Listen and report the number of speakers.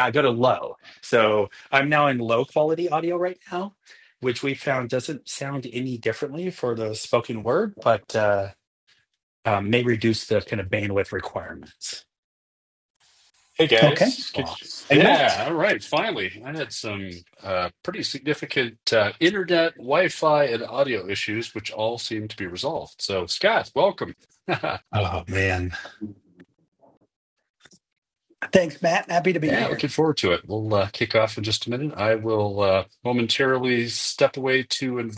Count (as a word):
three